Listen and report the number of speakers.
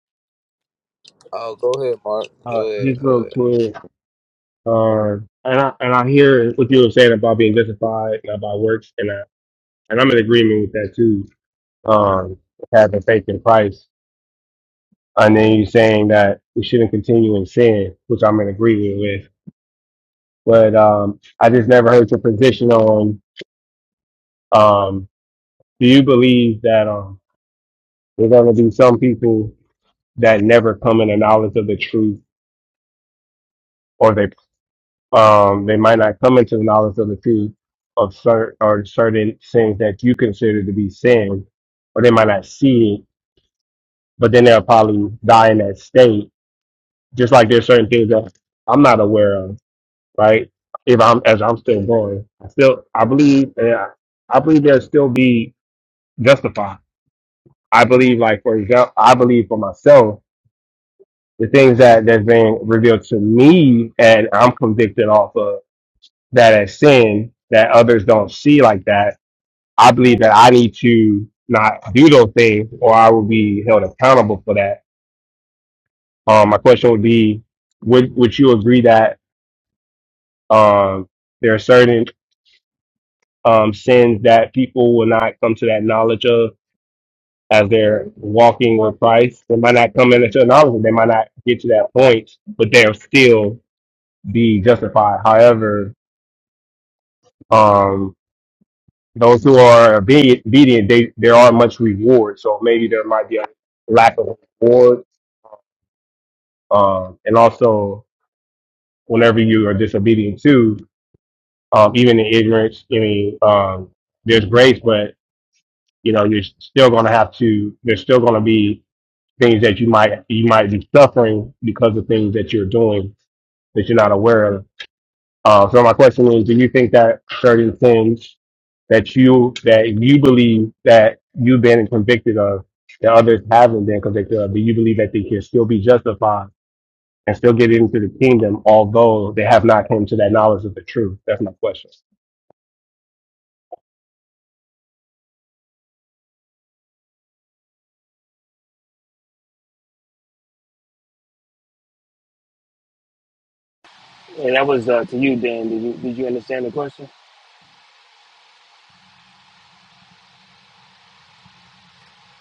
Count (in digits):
3